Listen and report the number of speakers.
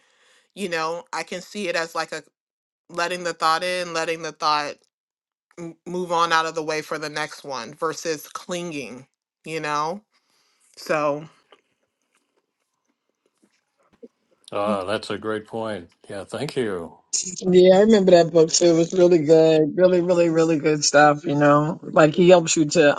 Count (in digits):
3